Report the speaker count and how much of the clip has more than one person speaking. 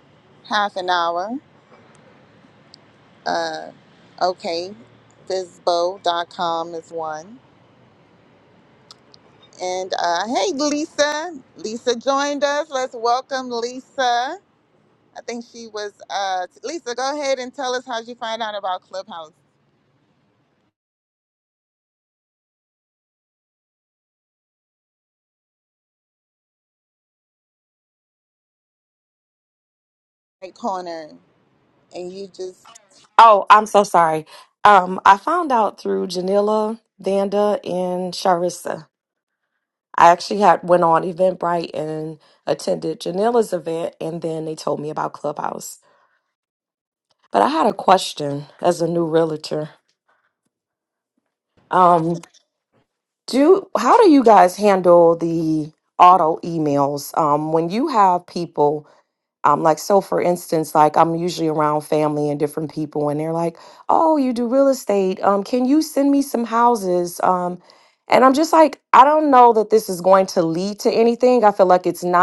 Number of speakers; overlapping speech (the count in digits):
2, no overlap